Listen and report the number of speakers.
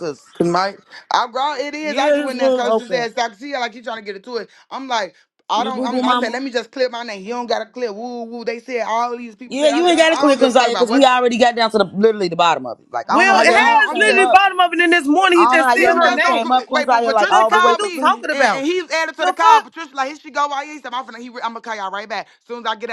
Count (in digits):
3